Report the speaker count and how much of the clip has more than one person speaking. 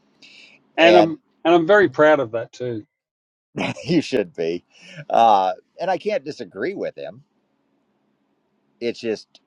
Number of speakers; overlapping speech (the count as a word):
two, about 3%